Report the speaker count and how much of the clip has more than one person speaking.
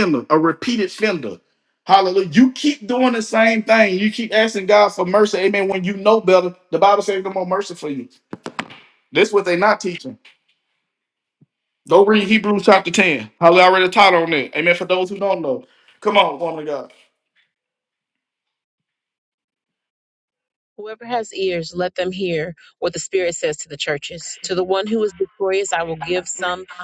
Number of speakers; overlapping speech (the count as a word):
two, no overlap